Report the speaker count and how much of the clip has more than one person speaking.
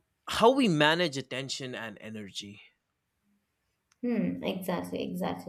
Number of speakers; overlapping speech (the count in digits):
2, no overlap